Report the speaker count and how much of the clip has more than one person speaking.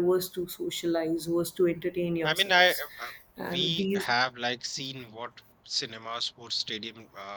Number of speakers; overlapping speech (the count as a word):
two, about 14%